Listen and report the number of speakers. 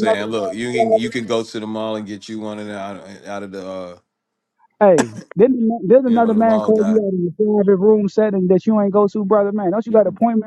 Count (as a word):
two